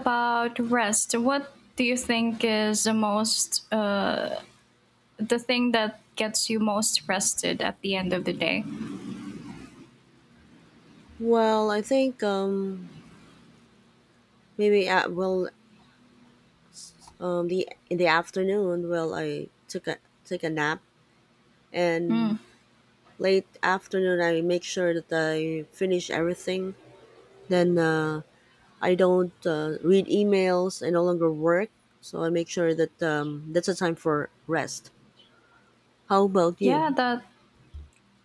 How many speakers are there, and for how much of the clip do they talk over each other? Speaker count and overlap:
2, about 1%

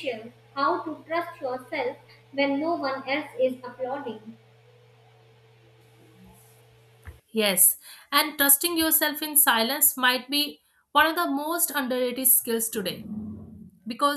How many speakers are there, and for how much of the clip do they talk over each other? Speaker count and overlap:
2, no overlap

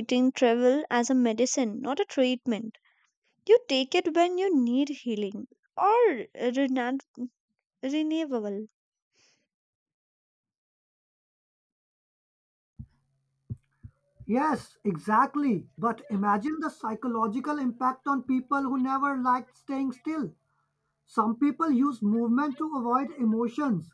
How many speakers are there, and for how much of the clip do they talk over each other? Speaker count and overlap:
2, no overlap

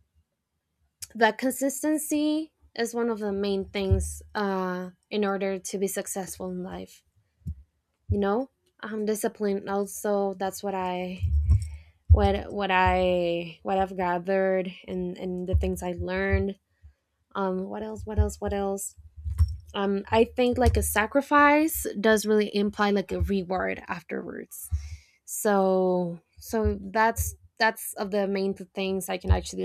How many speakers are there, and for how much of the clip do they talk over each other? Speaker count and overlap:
1, no overlap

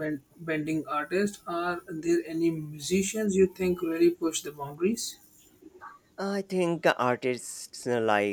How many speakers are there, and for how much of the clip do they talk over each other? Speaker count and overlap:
2, no overlap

